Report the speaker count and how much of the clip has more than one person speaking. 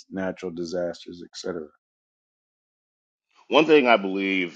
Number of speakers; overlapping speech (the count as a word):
two, no overlap